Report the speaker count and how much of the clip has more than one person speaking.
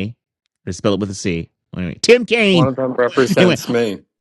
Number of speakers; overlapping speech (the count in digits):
2, about 10%